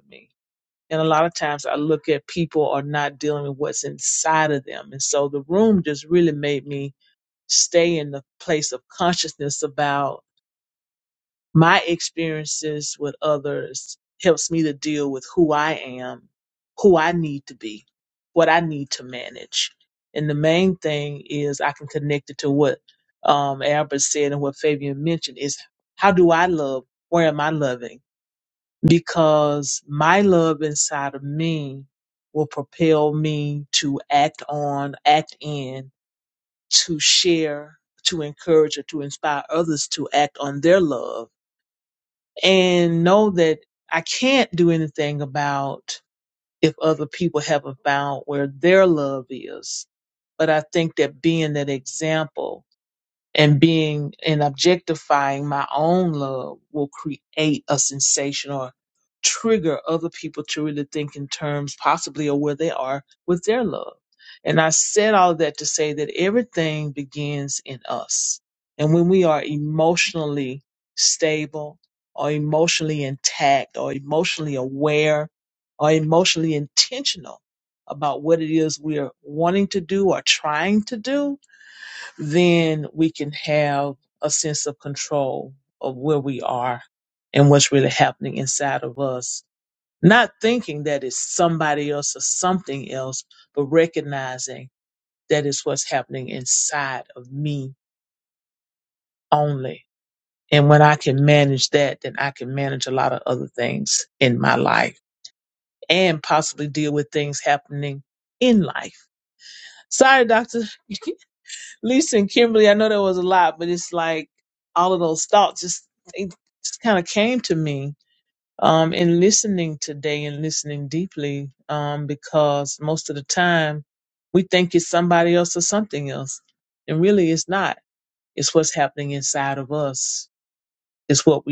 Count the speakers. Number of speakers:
1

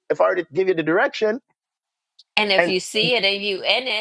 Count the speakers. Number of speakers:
2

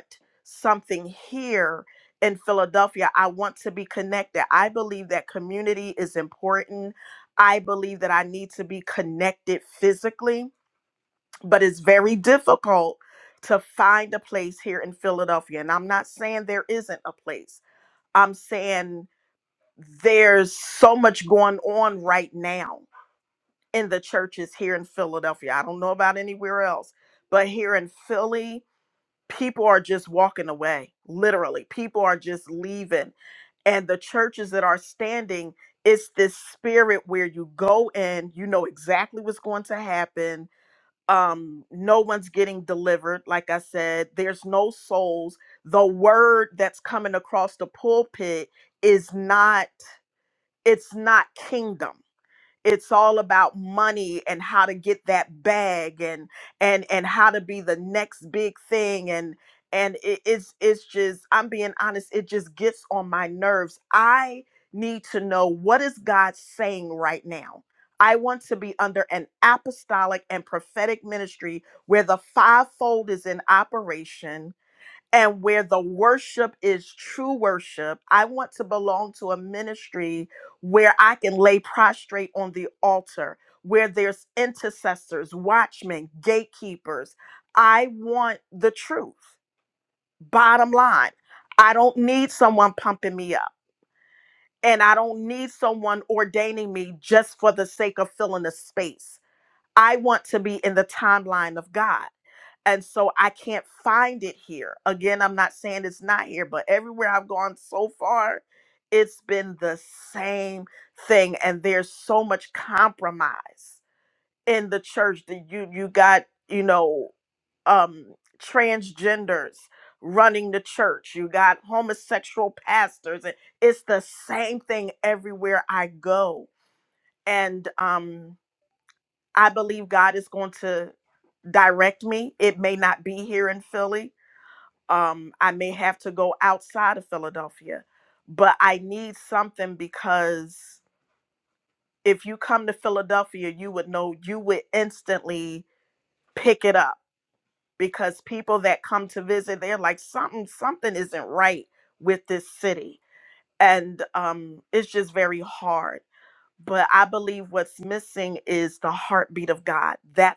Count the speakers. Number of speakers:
1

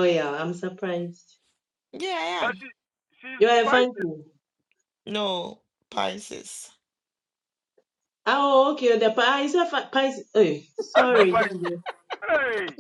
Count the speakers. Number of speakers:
3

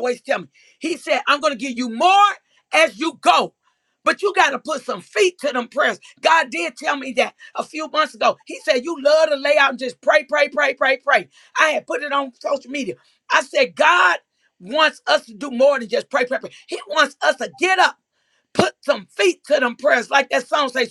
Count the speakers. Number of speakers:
1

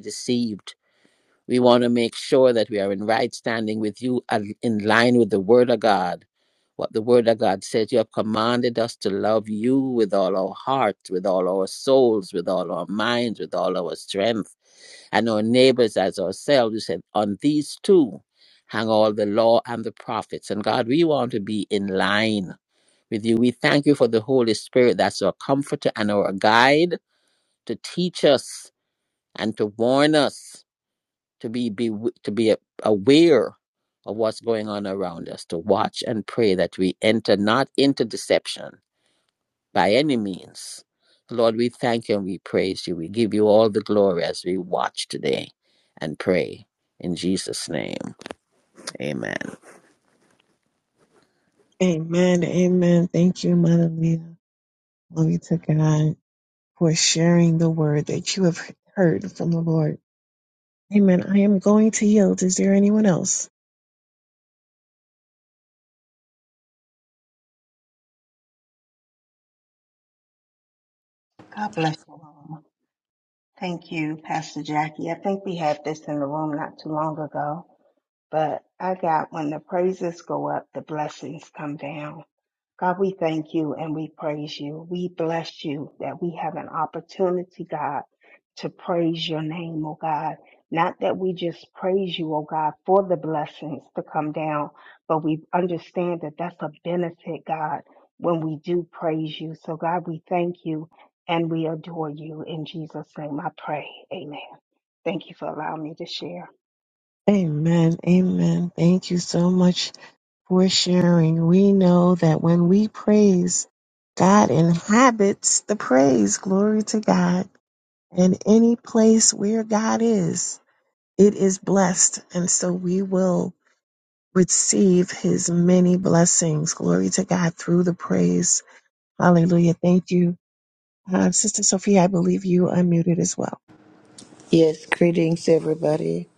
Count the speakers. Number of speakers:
4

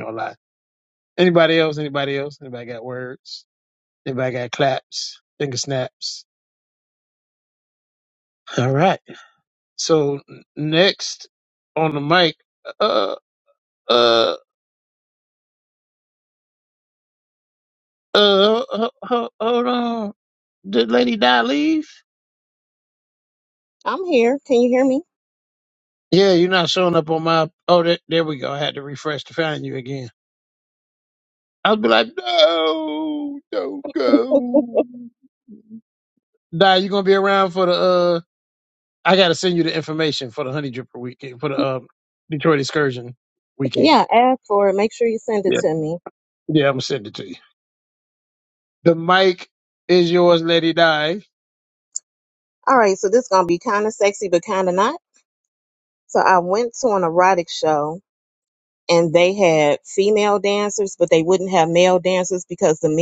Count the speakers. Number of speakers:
2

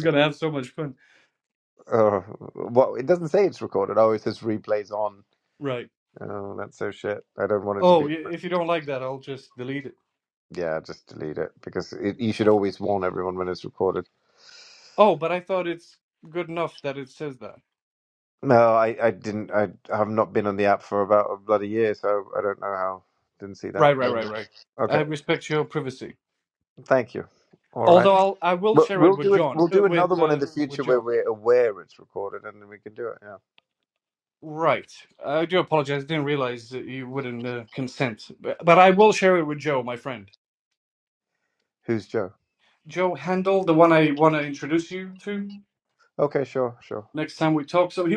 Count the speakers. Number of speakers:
2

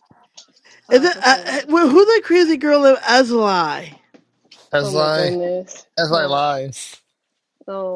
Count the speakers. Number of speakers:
3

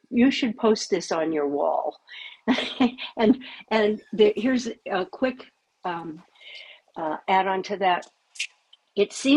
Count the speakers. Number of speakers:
1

